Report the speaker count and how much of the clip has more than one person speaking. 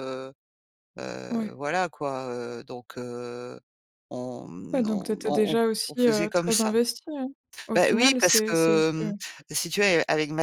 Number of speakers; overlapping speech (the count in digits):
2, about 31%